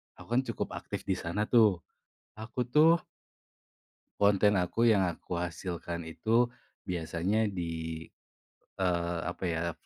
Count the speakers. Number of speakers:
one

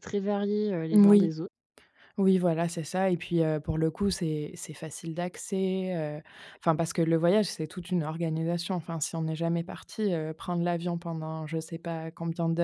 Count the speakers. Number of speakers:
two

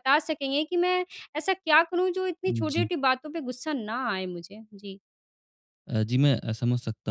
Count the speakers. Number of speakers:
two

